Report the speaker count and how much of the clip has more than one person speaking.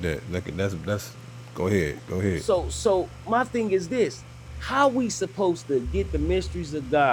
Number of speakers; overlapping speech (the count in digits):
2, no overlap